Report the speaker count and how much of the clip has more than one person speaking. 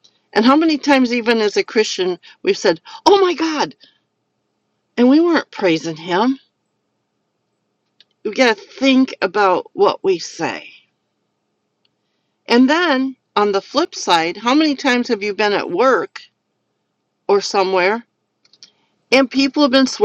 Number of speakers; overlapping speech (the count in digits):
1, no overlap